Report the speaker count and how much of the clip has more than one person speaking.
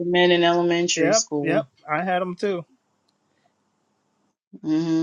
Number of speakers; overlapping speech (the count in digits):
2, about 13%